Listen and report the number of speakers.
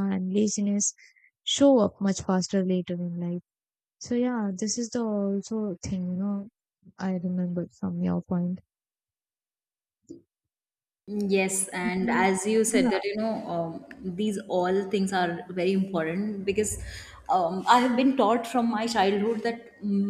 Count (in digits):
2